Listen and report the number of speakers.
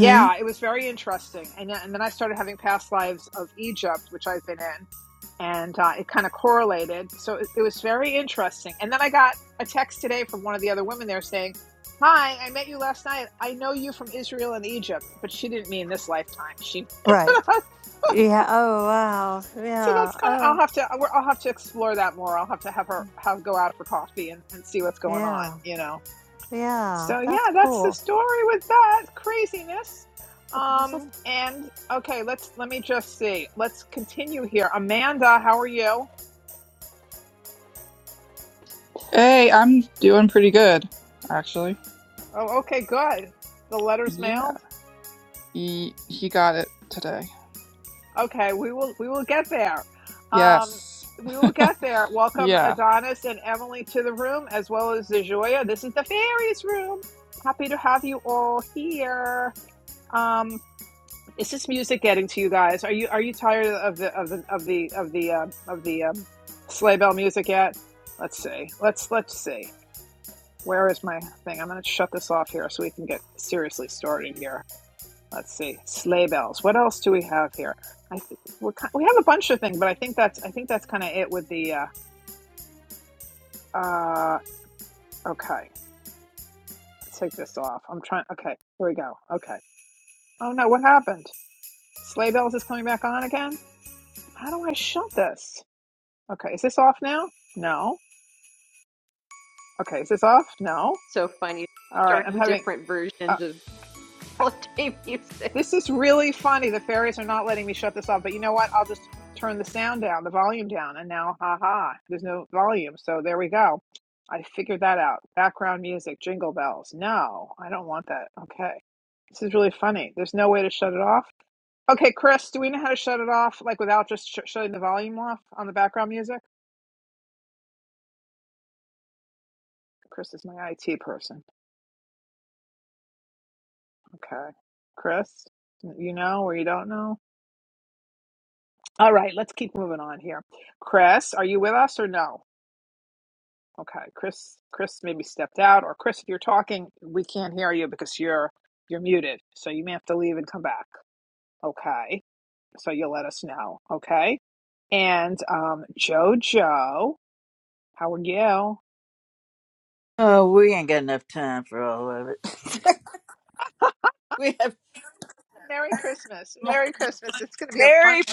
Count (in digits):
5